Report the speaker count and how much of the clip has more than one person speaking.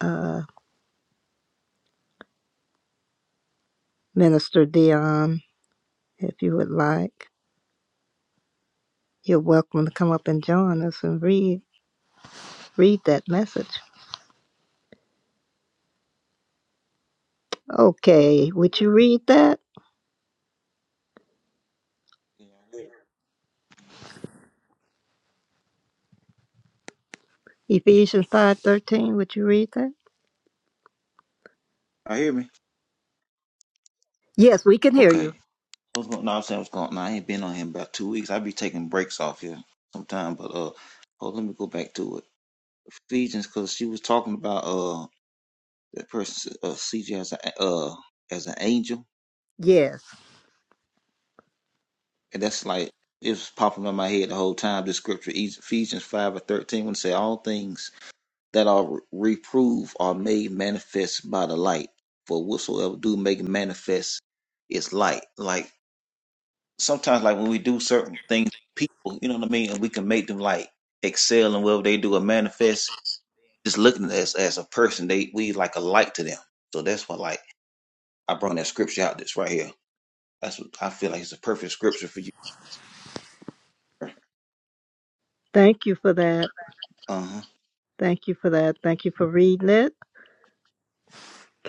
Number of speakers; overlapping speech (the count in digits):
2, under 1%